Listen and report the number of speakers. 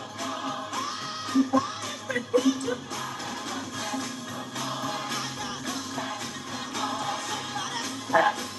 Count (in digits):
0